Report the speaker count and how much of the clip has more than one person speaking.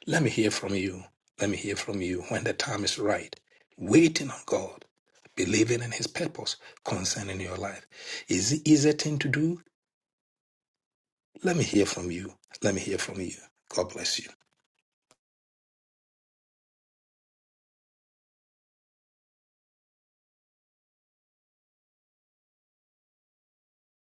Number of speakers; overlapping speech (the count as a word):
one, no overlap